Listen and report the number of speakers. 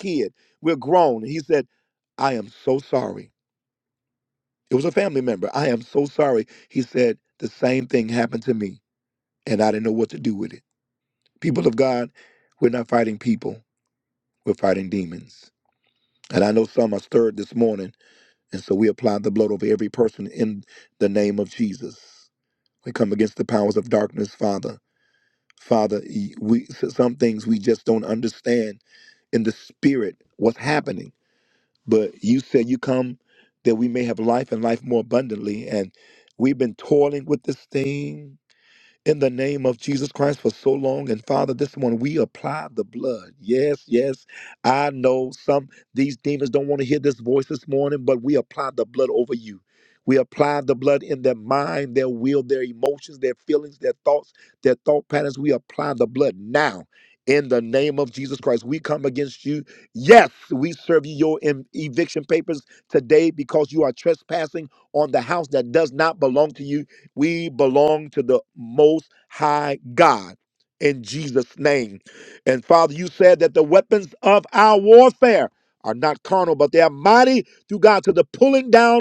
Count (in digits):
1